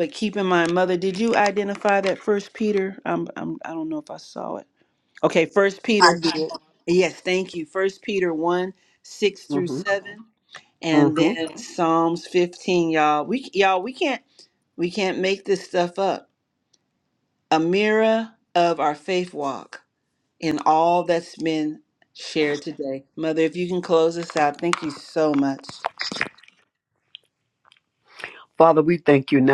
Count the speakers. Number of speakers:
2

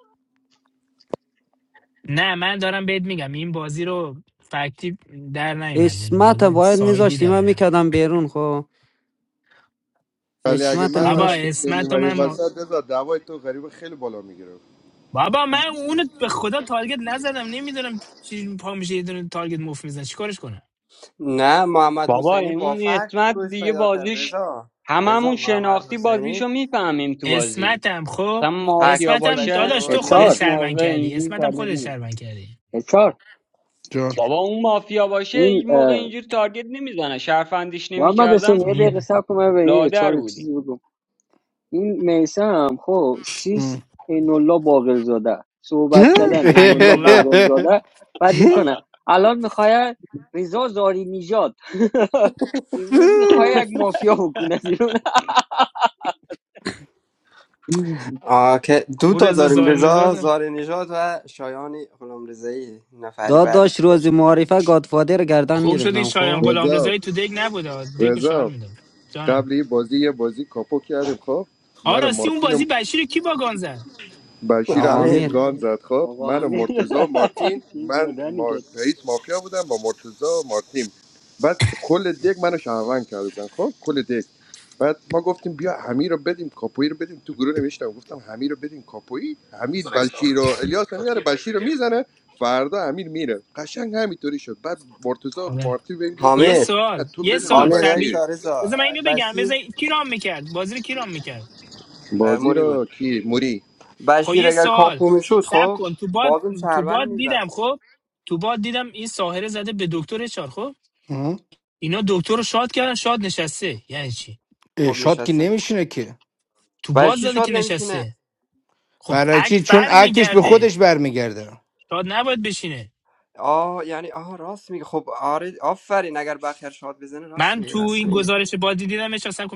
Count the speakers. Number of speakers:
7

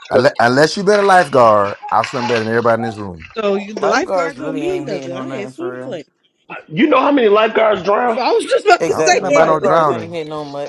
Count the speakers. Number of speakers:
4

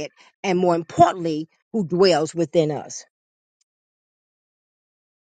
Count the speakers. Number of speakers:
1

